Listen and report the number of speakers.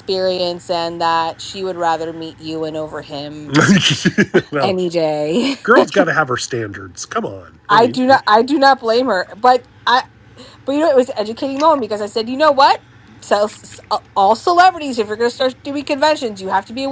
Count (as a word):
two